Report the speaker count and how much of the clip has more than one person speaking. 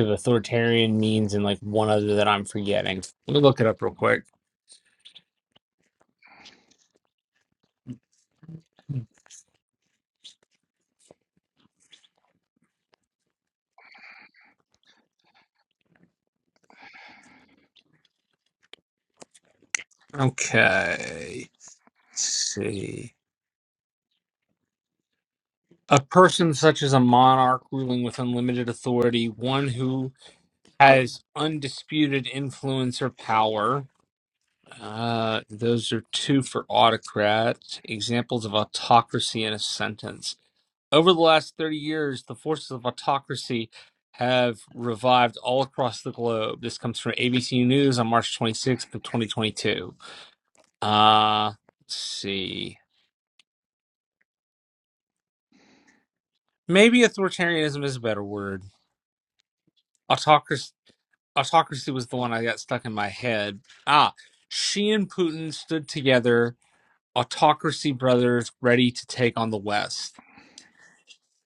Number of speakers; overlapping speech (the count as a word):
one, no overlap